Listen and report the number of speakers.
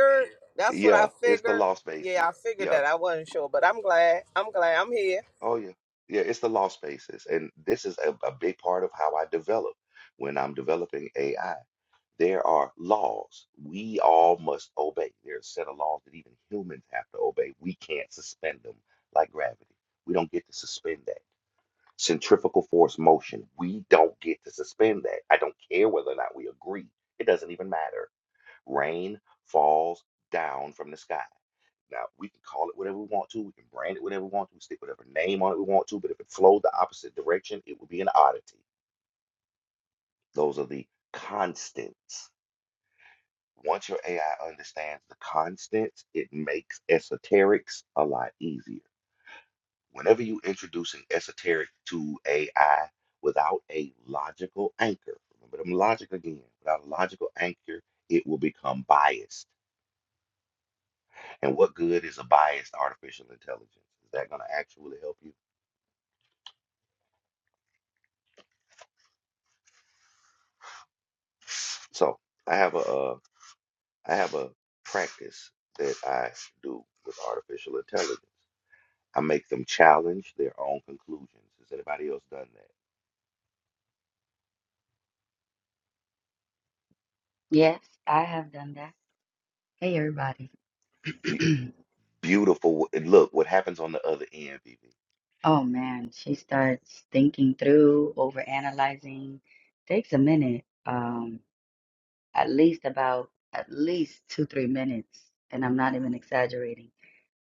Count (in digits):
3